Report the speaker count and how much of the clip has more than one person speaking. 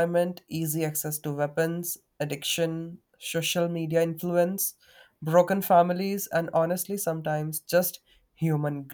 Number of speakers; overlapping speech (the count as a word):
one, no overlap